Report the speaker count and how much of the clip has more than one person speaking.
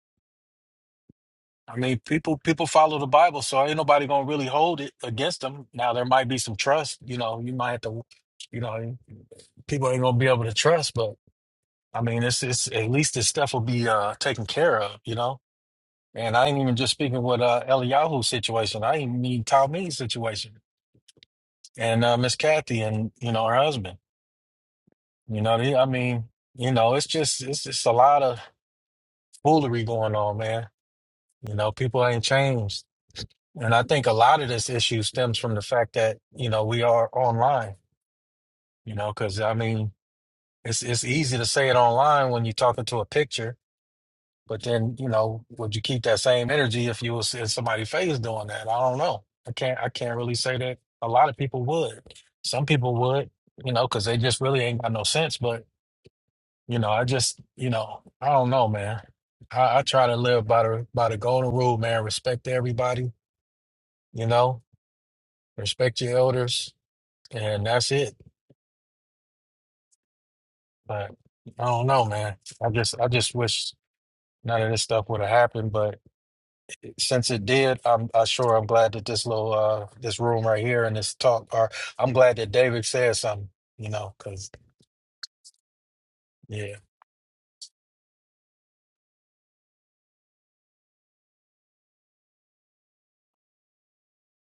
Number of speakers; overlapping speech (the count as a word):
one, no overlap